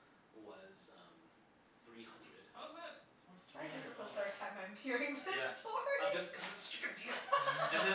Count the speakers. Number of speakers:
3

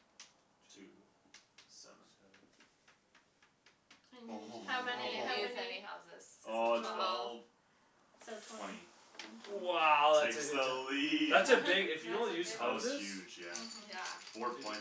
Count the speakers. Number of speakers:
4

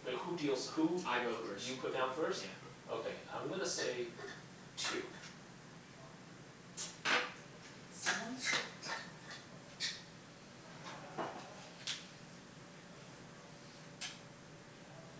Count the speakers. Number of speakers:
2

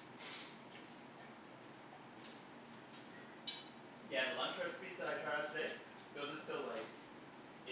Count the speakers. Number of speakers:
1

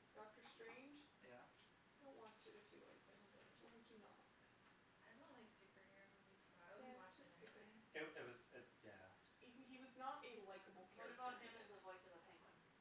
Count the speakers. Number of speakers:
4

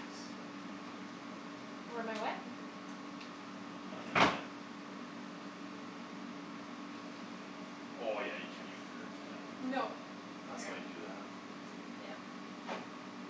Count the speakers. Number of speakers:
2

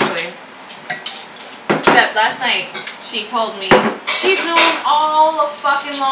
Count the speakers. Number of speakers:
1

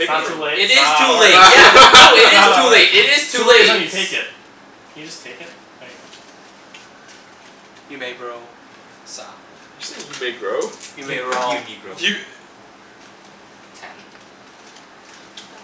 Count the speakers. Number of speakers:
4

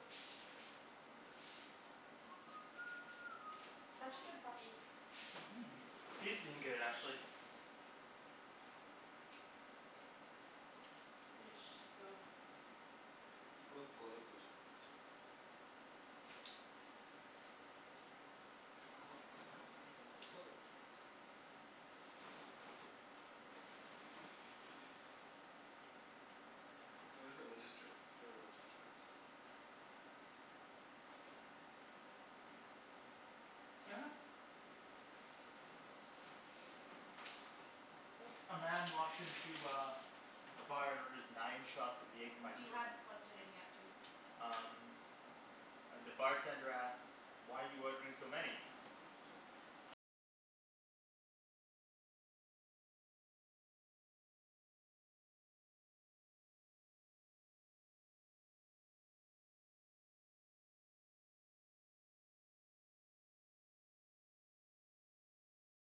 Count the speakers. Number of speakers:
3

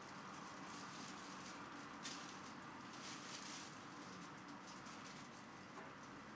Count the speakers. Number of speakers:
0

